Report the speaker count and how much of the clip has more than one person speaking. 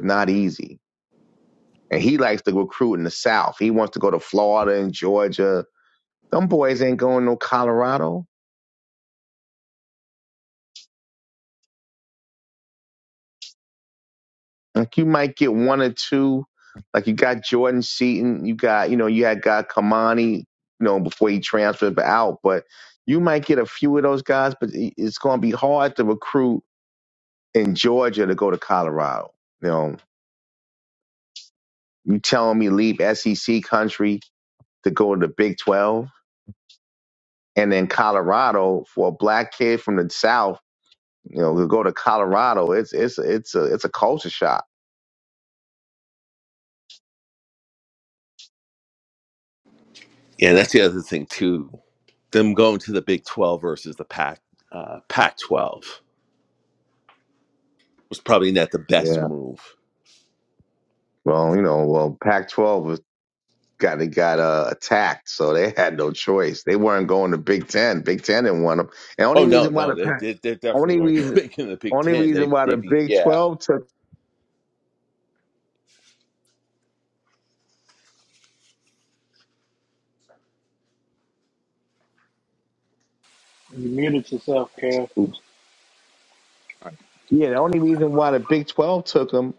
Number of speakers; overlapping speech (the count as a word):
three, about 4%